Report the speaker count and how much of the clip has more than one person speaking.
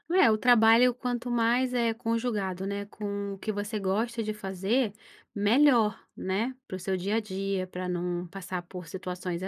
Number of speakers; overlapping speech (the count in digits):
1, no overlap